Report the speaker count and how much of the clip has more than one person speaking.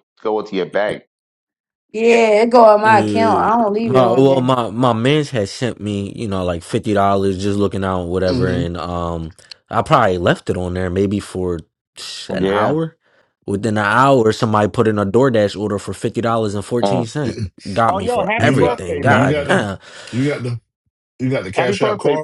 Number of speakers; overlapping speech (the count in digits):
4, about 23%